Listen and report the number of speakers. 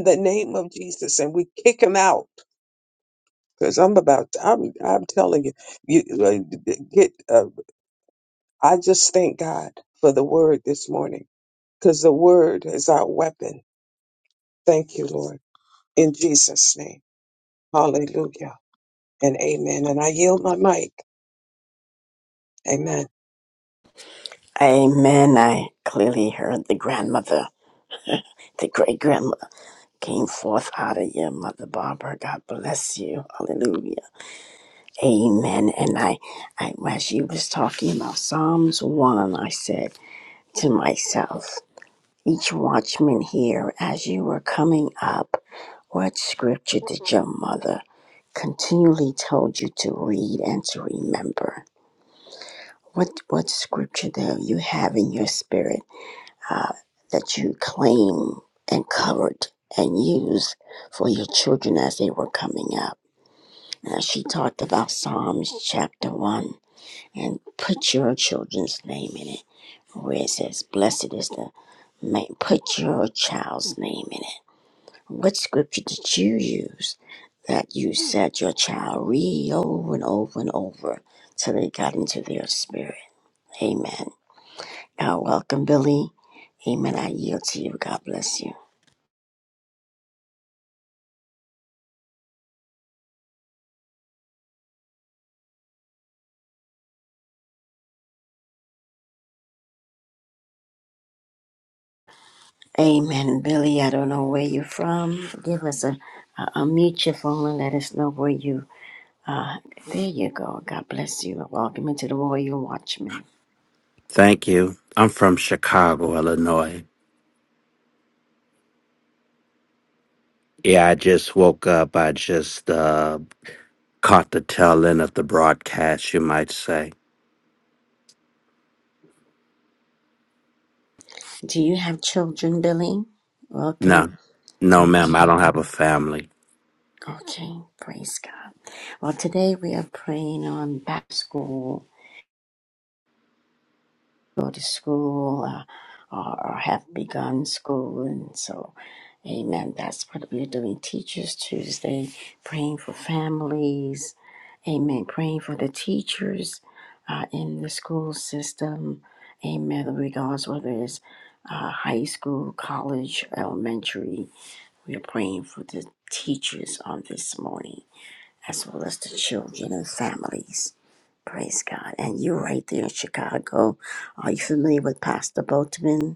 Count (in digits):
3